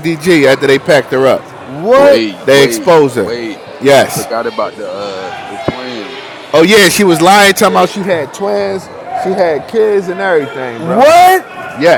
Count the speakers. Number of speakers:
3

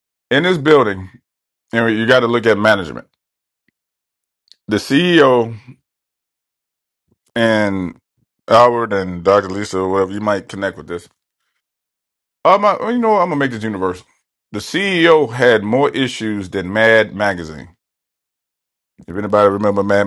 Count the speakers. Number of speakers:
1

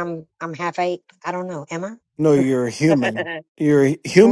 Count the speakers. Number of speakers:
2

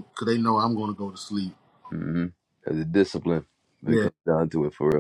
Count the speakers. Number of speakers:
2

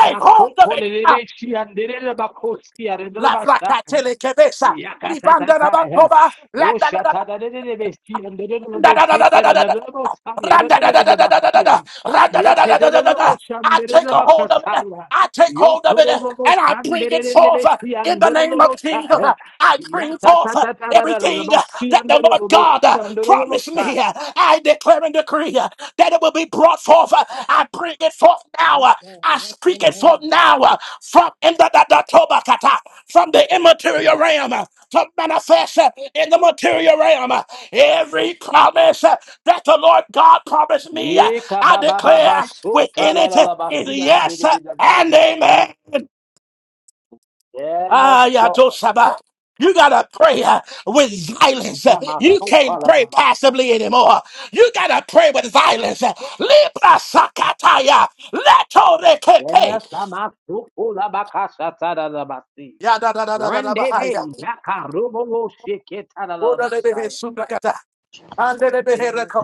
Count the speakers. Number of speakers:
2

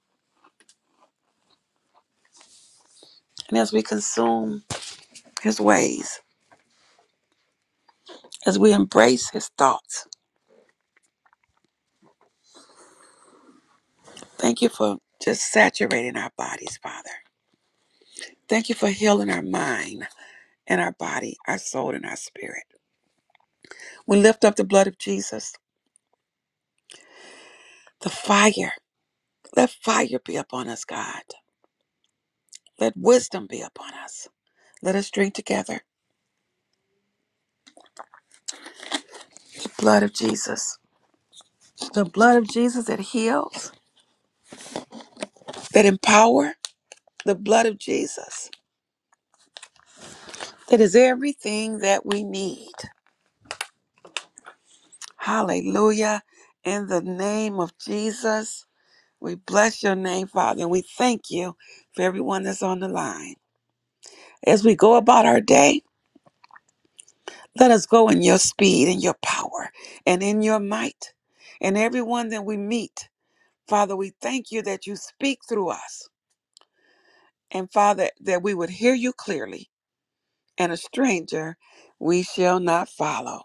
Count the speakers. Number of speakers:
1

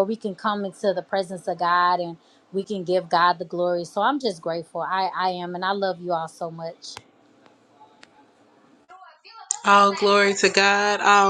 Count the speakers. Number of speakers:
2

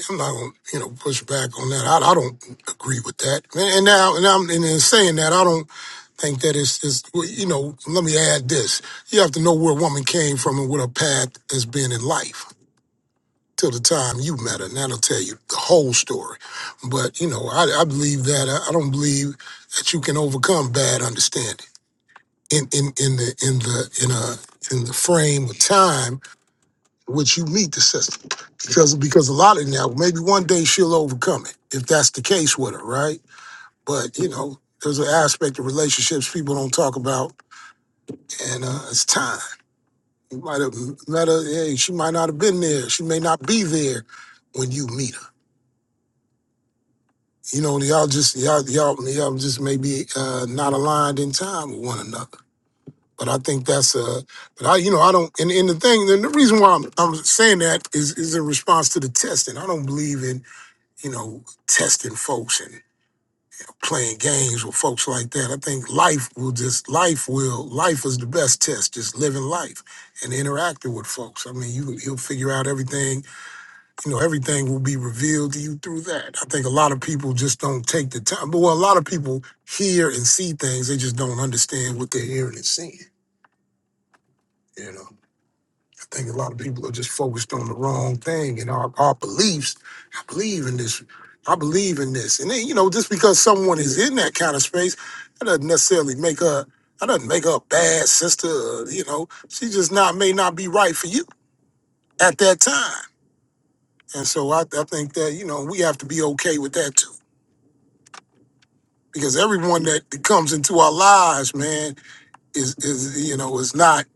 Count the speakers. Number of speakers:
1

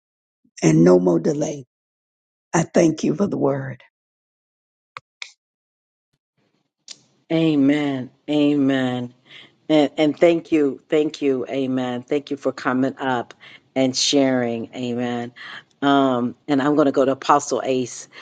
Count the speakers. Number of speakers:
2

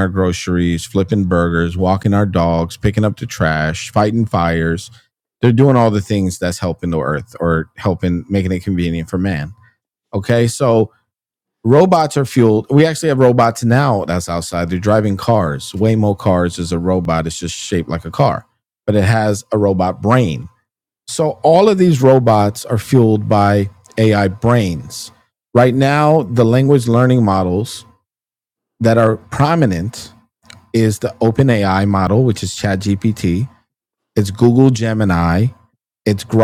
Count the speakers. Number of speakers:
1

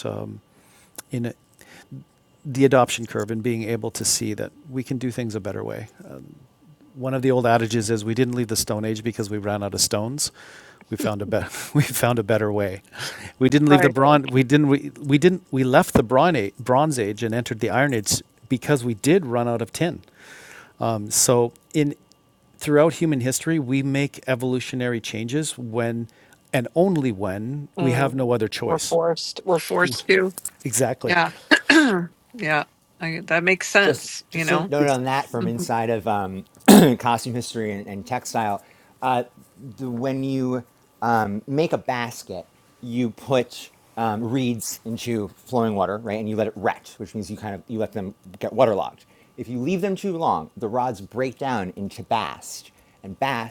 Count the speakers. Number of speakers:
3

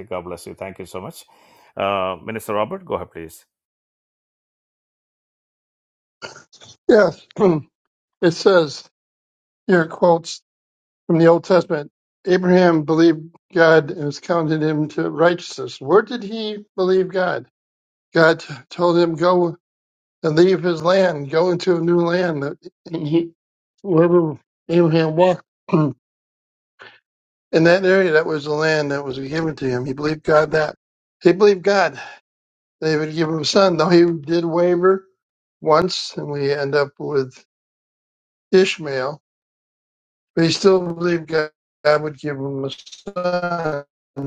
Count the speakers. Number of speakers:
2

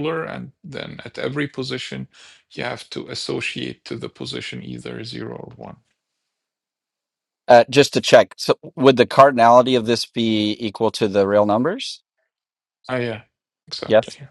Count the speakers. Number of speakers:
2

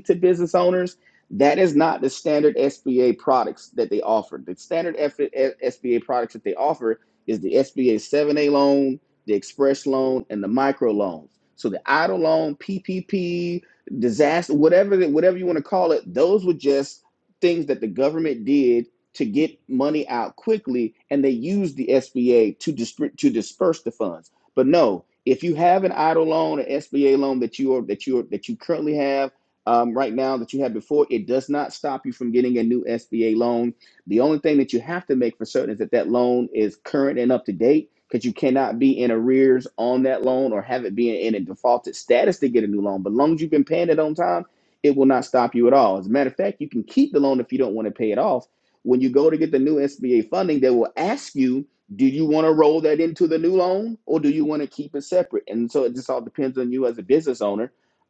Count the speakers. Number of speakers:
1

